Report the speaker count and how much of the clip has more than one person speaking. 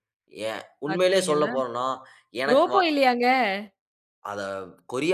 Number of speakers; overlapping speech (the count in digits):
2, about 21%